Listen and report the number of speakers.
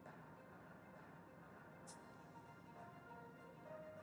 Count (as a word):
zero